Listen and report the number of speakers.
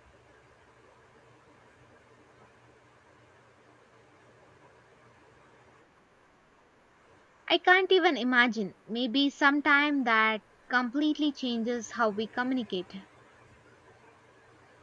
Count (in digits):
1